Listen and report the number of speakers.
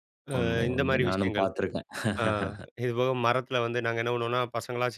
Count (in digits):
2